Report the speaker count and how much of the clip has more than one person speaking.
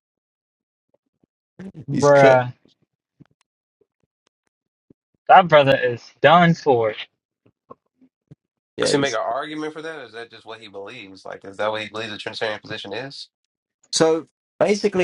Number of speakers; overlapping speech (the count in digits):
3, about 5%